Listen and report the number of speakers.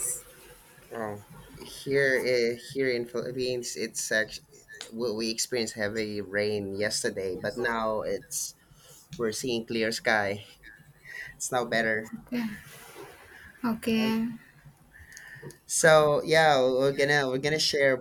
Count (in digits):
2